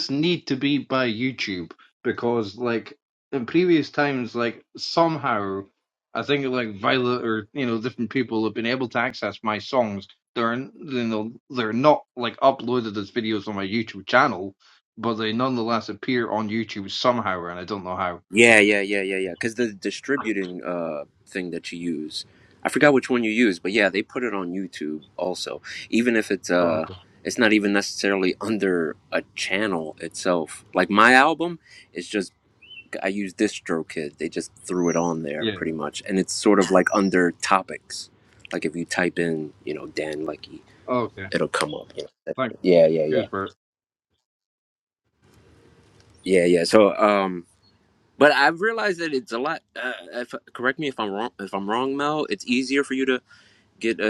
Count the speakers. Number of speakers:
two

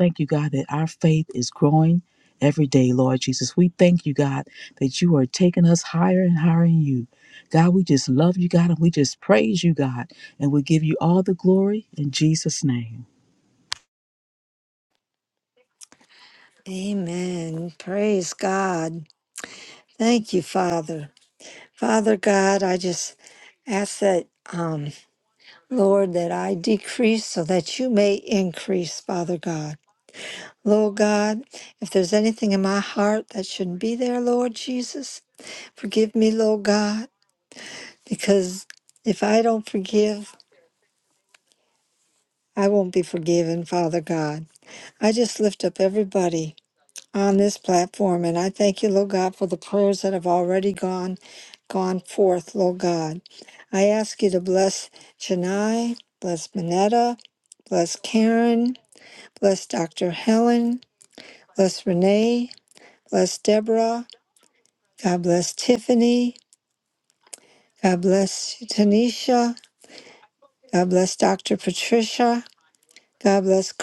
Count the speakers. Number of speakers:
two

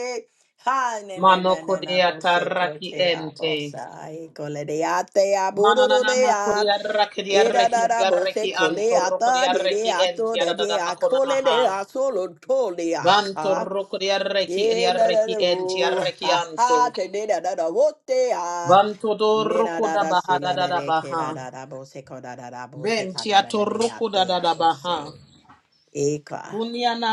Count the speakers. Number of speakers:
two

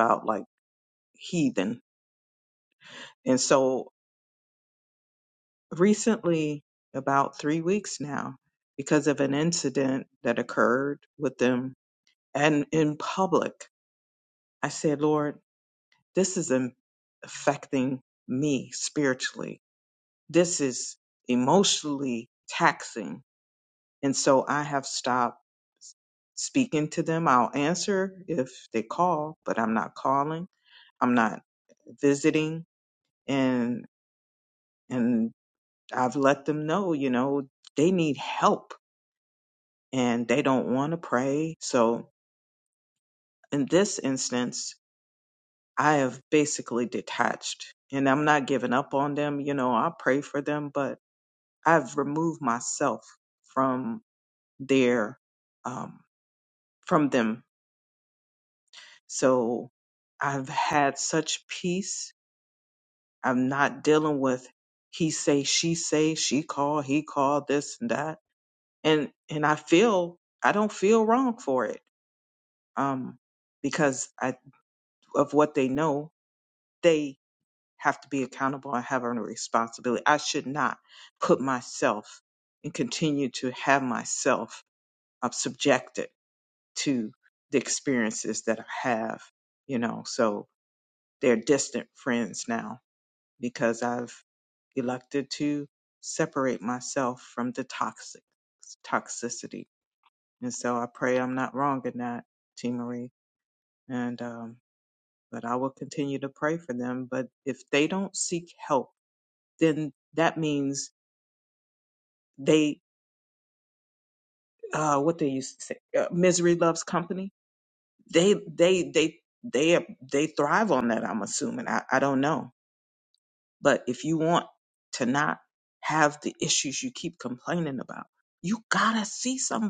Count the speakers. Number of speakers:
one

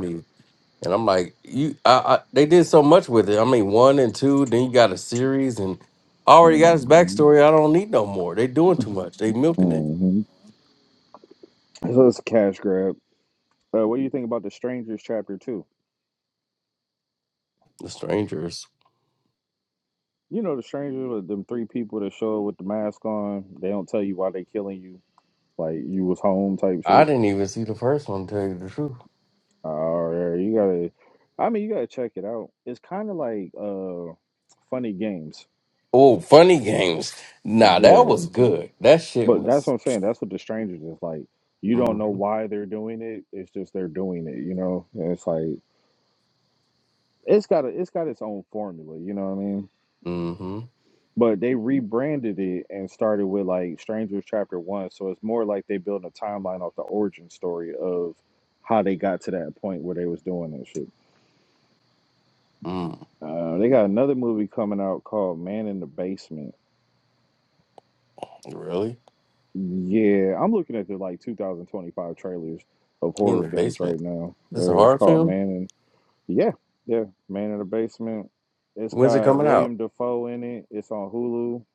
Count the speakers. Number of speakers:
two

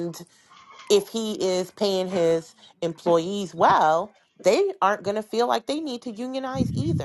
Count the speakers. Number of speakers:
one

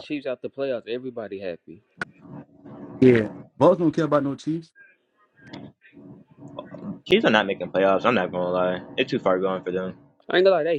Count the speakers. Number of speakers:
three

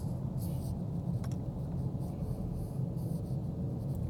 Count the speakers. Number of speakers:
zero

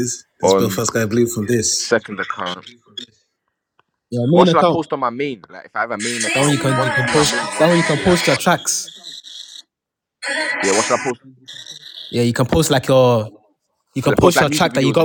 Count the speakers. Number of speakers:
three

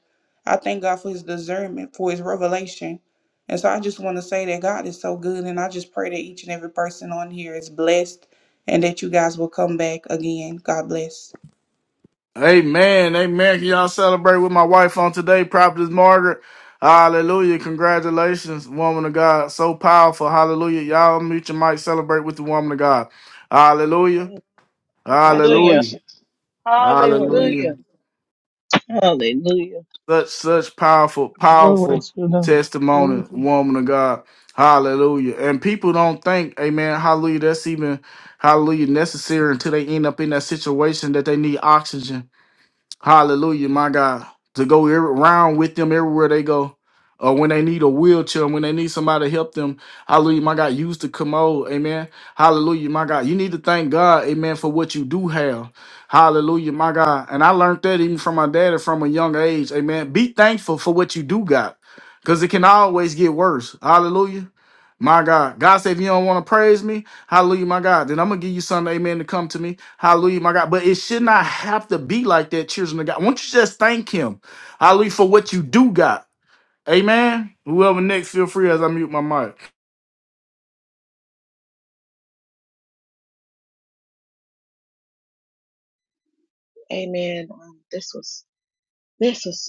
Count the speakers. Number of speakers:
four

